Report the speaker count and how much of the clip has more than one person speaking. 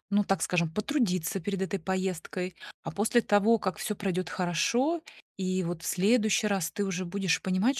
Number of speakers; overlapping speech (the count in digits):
1, no overlap